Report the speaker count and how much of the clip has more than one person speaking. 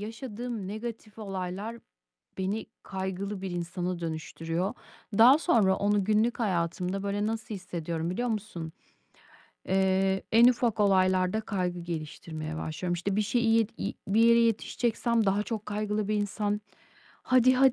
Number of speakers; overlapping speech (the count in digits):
1, no overlap